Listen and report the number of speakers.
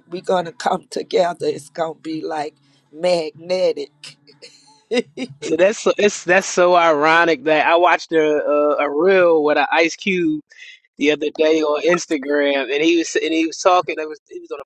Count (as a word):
two